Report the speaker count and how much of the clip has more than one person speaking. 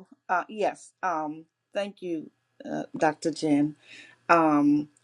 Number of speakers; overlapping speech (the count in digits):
1, no overlap